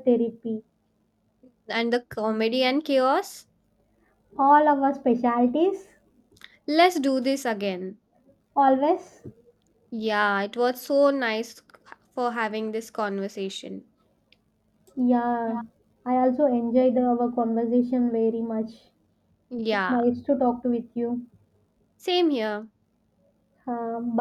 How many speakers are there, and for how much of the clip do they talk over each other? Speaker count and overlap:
2, about 1%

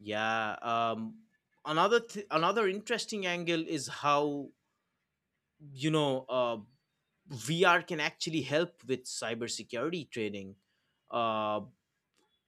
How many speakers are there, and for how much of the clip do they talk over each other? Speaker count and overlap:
1, no overlap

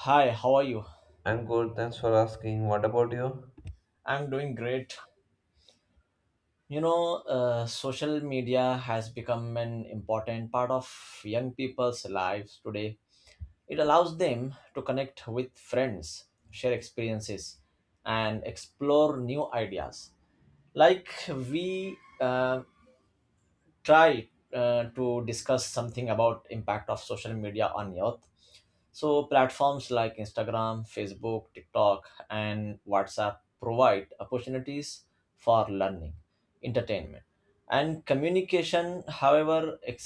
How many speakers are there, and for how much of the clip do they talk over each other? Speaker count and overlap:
2, no overlap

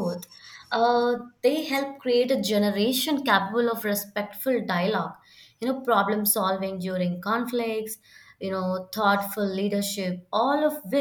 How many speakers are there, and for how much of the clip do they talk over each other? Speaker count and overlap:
1, no overlap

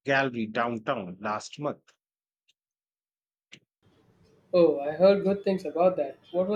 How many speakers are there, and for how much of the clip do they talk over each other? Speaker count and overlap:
2, no overlap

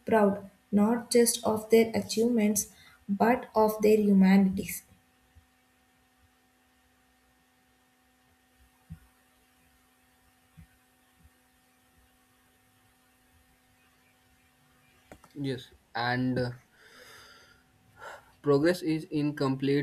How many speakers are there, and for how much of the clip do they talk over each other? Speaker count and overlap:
2, no overlap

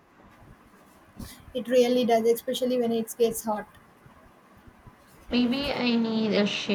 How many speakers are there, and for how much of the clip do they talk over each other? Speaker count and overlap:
2, no overlap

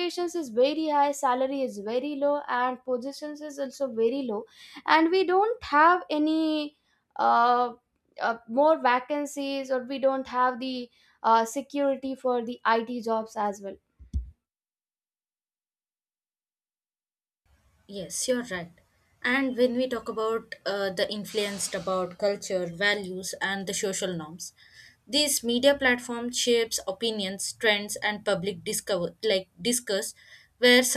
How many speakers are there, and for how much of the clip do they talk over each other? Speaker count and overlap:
2, no overlap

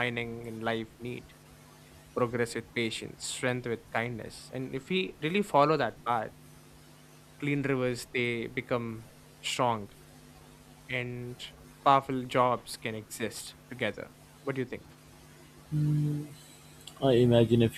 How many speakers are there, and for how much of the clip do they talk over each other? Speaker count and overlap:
2, no overlap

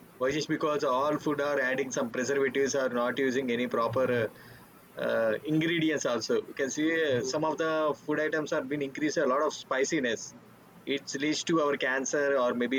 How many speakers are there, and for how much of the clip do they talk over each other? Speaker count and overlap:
1, no overlap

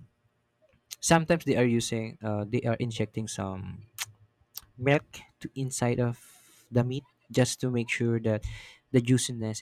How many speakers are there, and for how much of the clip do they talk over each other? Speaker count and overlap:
1, no overlap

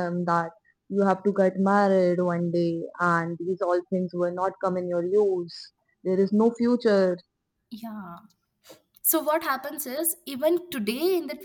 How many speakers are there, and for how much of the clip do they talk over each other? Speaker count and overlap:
2, no overlap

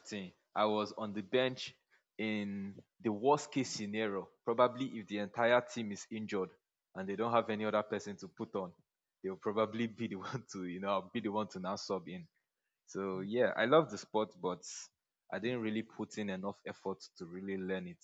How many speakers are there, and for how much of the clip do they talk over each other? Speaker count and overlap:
1, no overlap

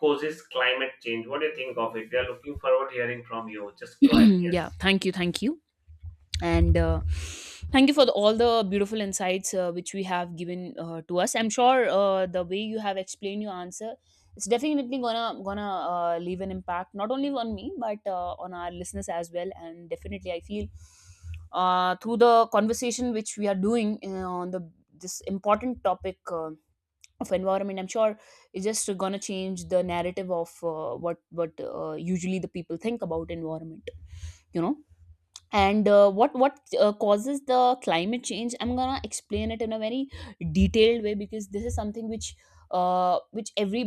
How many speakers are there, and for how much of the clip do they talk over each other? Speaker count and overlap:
2, under 1%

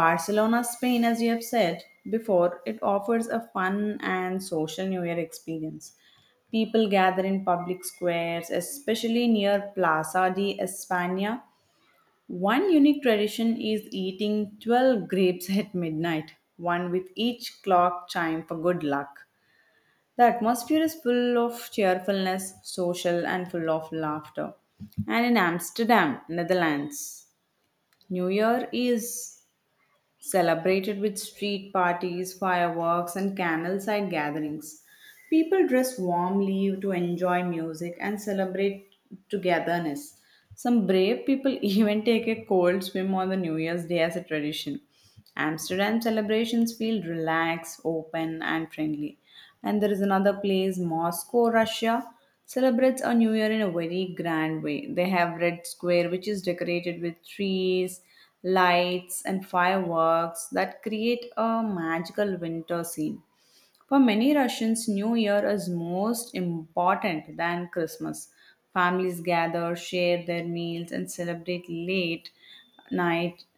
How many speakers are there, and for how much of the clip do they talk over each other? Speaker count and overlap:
1, no overlap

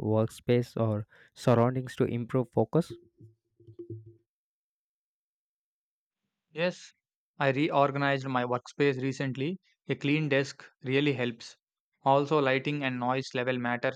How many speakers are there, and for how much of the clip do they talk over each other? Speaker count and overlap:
2, no overlap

